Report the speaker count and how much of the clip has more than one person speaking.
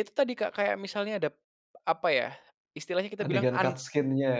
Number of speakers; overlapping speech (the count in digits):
2, about 12%